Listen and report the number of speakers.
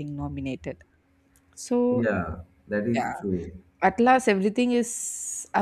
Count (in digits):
2